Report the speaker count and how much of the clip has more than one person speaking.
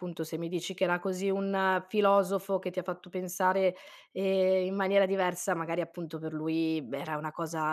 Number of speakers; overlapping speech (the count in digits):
1, no overlap